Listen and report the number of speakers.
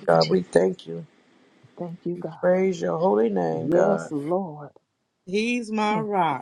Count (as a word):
three